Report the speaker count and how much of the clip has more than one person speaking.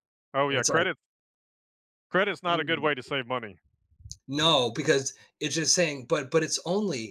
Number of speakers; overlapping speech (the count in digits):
2, about 12%